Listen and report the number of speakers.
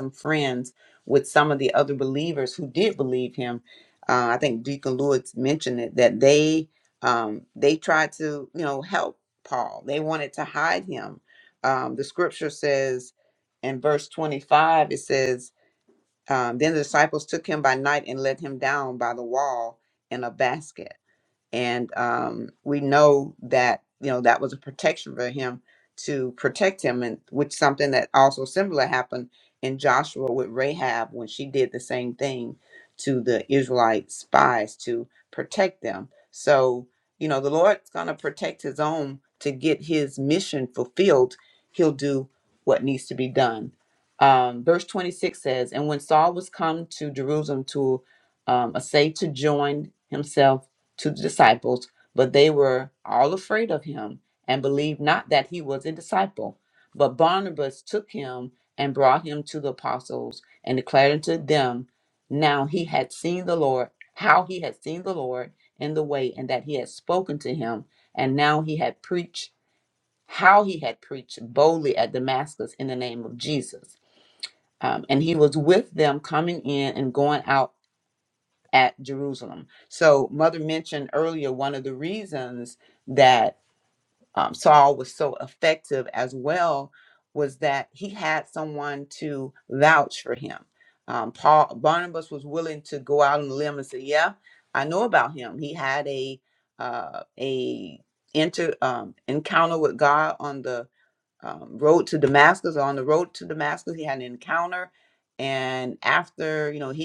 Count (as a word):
one